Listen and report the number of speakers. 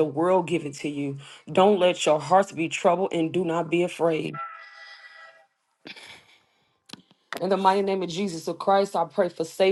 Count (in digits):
1